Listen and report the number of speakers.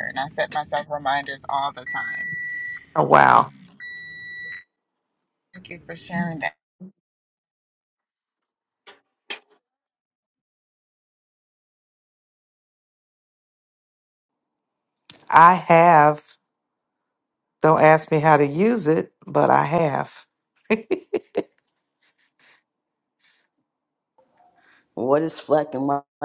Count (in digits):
3